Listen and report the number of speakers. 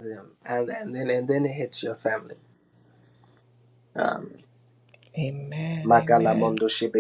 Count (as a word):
two